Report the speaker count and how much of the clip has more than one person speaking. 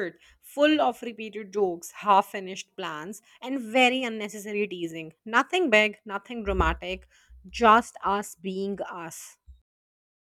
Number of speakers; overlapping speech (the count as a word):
one, no overlap